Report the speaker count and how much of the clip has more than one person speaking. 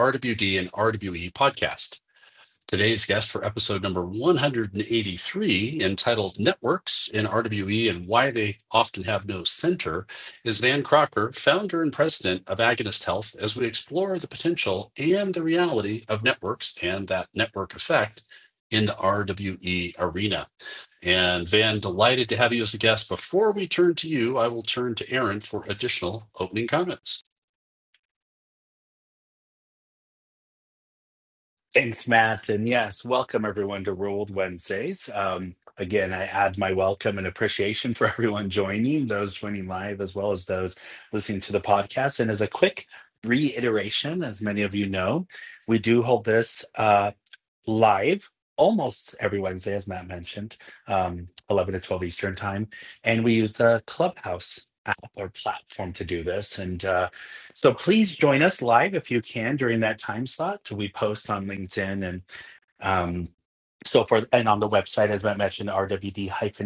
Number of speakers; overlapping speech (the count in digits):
2, no overlap